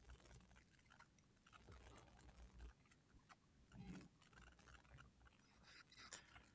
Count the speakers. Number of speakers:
0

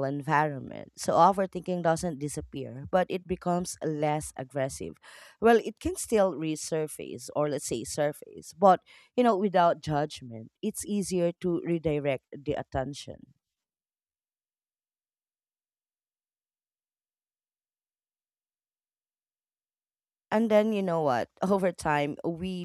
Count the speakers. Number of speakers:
1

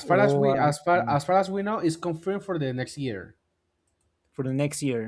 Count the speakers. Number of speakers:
2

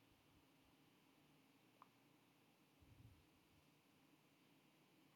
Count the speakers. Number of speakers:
0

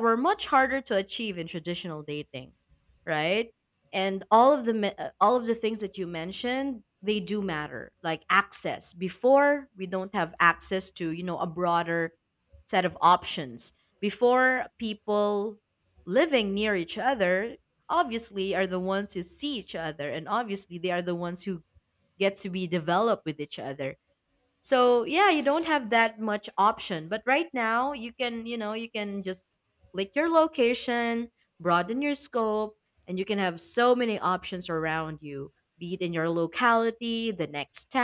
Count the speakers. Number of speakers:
1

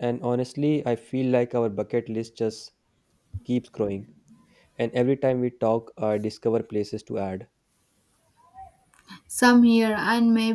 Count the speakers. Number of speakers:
2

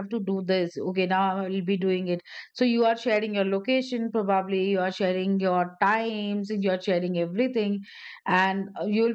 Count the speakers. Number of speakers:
1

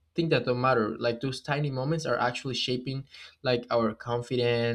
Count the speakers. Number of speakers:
1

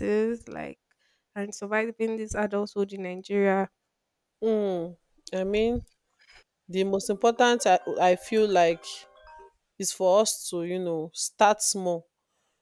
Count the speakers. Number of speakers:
2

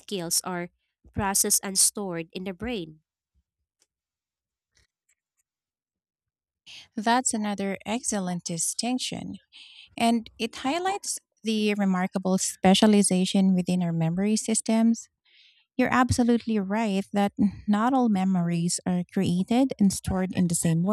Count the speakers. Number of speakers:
2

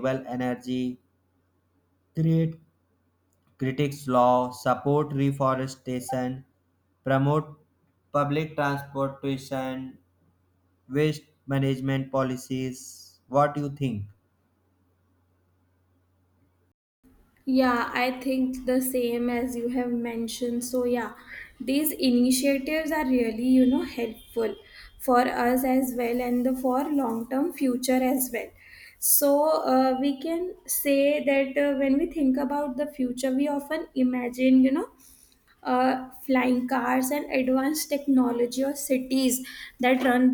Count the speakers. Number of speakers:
2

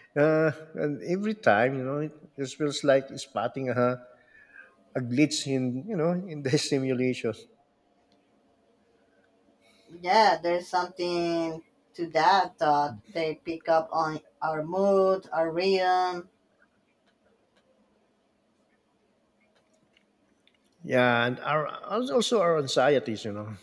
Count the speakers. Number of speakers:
2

